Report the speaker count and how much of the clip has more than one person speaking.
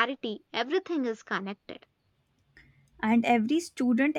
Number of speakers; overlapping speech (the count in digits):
2, no overlap